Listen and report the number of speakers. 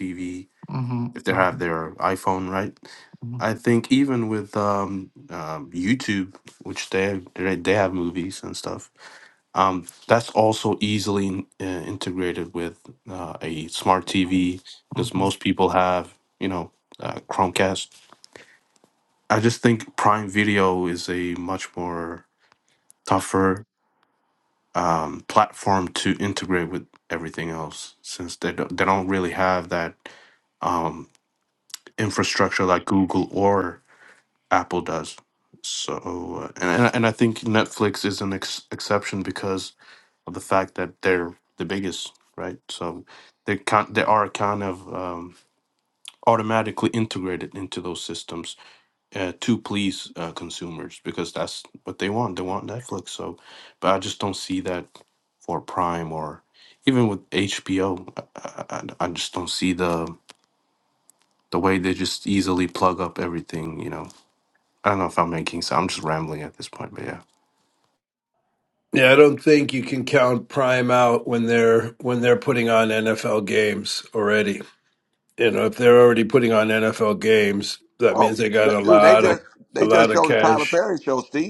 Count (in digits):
4